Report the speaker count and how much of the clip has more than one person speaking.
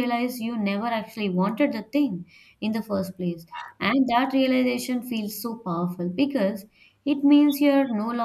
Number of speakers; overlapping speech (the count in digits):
1, no overlap